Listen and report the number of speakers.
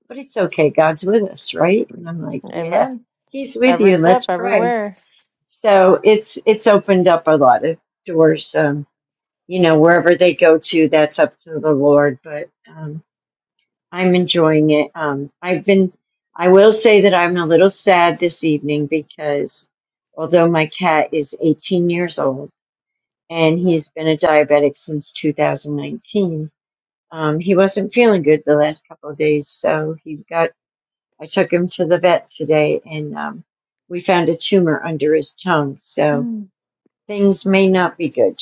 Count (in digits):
2